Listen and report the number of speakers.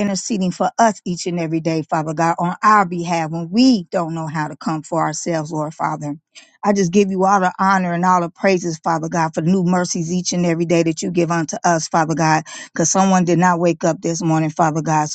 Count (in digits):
1